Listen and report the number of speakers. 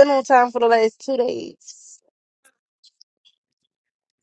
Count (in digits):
1